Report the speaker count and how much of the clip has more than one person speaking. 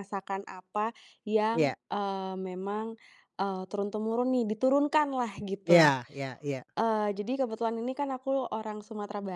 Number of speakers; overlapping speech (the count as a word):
two, about 5%